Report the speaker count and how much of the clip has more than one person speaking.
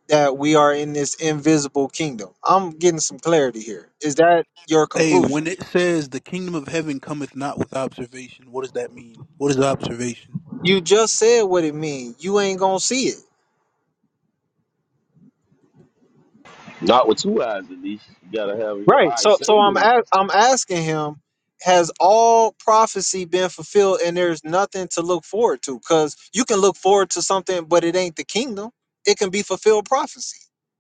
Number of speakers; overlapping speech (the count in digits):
3, about 5%